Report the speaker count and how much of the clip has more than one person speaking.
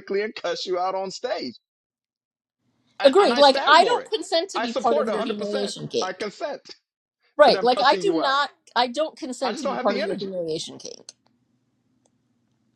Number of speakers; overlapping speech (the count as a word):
two, about 36%